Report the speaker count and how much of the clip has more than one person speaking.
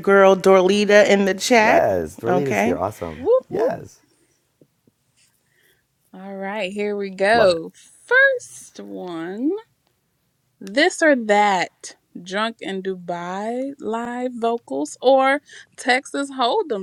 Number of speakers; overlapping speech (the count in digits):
3, about 10%